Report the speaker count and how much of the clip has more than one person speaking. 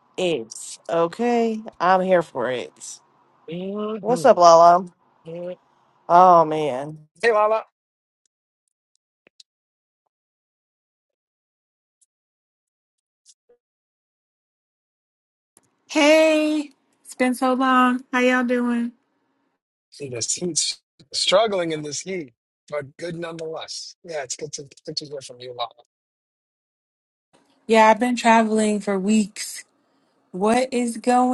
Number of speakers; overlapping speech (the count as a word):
three, about 1%